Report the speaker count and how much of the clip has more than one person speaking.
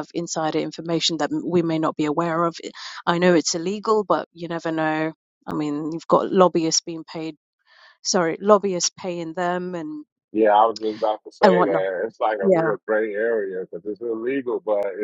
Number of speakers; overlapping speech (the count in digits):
2, about 5%